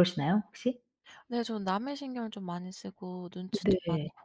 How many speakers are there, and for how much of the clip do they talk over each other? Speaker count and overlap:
2, about 12%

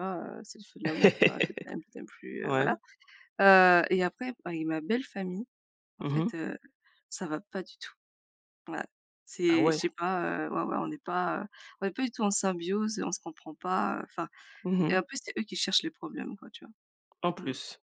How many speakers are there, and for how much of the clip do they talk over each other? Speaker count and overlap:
2, about 7%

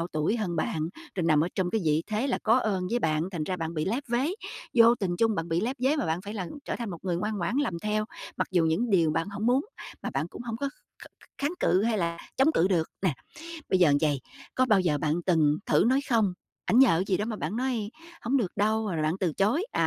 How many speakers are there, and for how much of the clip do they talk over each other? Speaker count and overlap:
1, no overlap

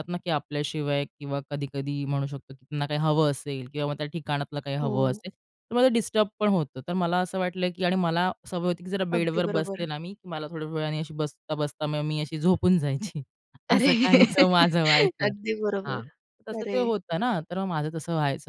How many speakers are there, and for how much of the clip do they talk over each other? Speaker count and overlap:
2, about 11%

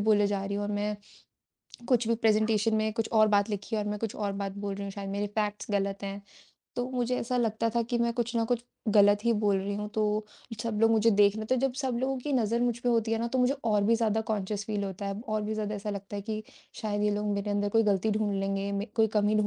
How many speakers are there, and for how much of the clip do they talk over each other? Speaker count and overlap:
1, no overlap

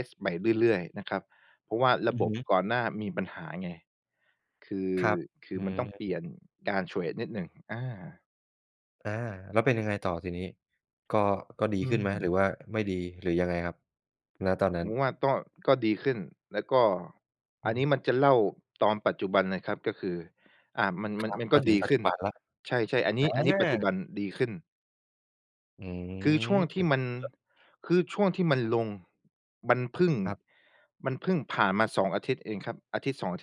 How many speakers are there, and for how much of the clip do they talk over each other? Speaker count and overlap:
2, about 10%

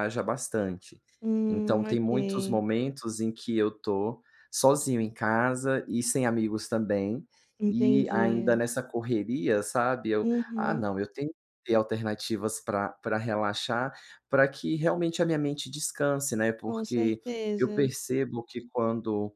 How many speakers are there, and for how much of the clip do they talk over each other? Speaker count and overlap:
2, about 18%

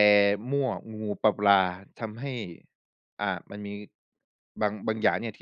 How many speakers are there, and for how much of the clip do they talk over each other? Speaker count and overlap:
1, no overlap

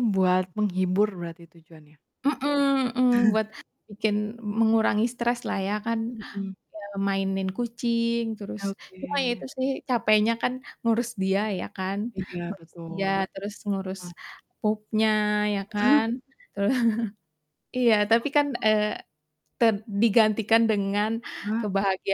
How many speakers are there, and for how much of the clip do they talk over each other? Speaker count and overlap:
2, about 3%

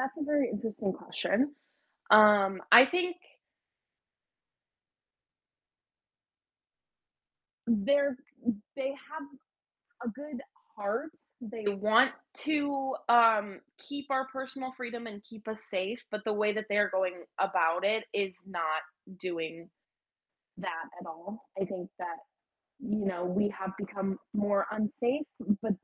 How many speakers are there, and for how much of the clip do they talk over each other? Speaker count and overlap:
1, no overlap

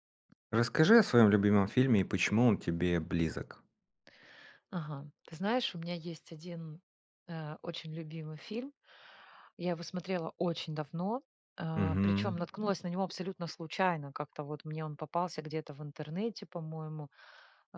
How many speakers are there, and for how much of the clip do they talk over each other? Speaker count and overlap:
2, about 3%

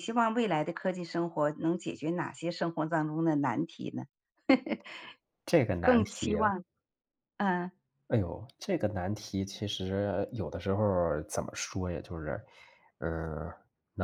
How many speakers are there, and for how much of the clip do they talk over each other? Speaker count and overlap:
2, about 5%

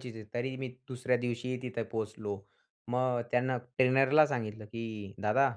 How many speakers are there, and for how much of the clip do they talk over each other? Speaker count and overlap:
1, no overlap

